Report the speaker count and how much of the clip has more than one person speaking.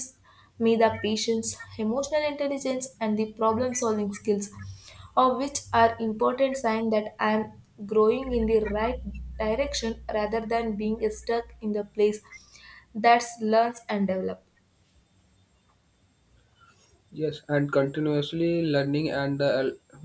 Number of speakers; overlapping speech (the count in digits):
2, no overlap